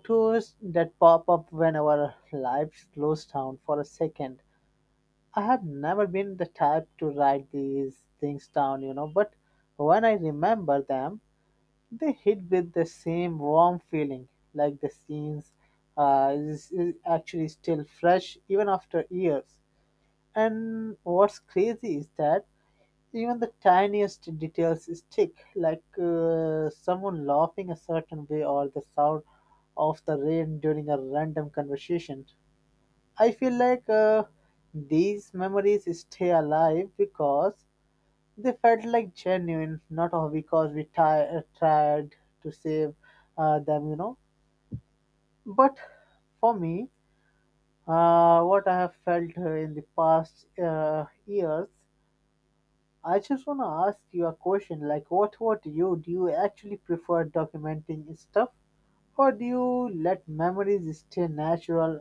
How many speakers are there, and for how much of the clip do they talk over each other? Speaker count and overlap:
one, no overlap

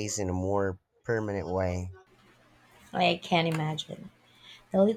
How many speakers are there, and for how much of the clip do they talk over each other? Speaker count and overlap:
two, no overlap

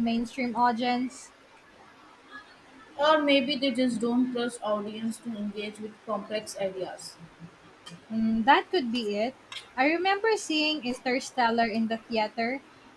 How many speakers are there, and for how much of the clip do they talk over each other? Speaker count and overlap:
two, no overlap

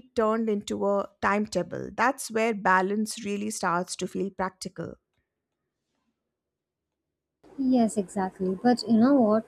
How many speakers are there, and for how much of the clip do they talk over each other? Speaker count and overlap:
two, no overlap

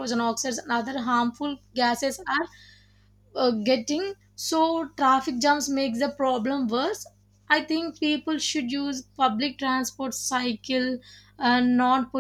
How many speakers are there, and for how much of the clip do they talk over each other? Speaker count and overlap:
one, no overlap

